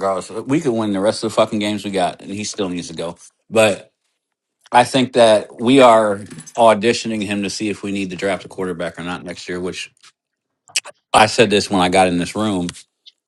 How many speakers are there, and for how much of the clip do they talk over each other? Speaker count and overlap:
1, no overlap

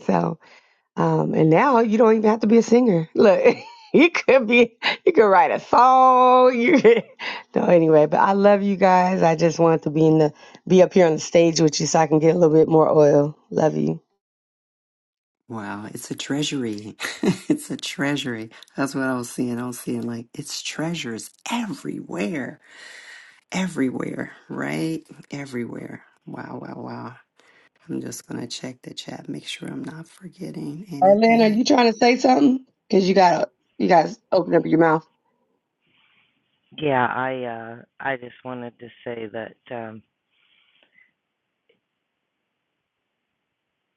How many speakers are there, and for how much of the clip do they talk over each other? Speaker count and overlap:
3, about 1%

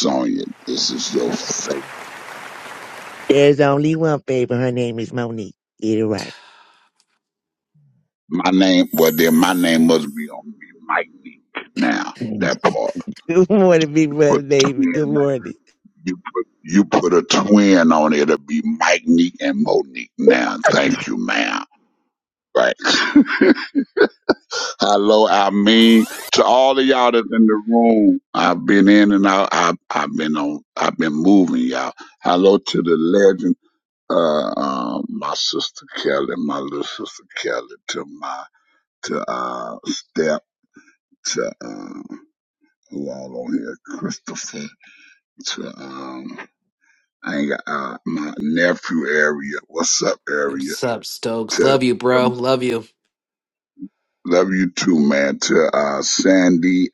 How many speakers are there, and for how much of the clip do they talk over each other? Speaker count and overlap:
3, about 2%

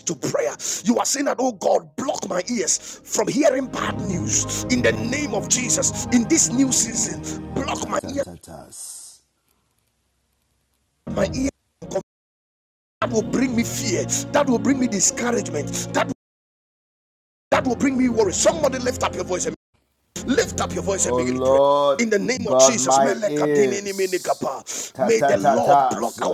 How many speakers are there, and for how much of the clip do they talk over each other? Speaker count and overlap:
2, about 14%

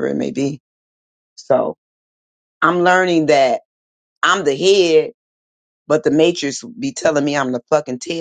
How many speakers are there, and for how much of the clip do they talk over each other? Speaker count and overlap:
1, no overlap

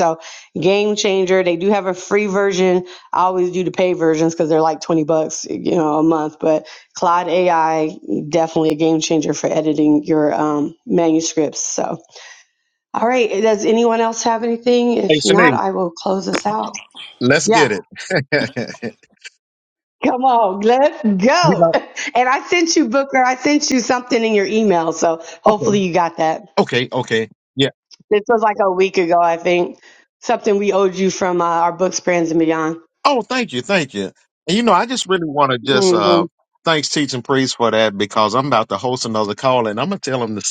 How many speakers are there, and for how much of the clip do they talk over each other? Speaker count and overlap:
2, about 5%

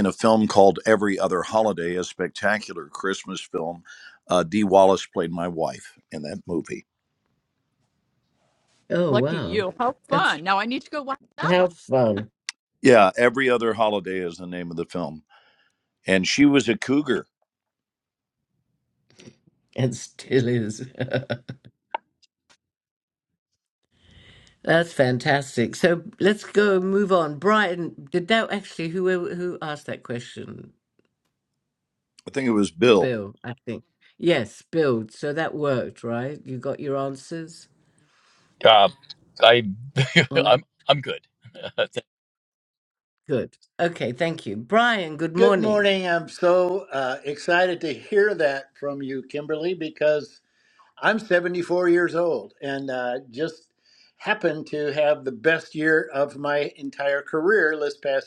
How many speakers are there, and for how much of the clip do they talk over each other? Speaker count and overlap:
5, about 3%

